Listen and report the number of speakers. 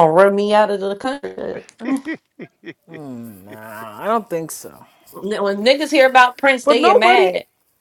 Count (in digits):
2